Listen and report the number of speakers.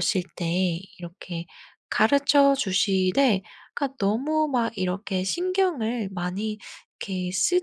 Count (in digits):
1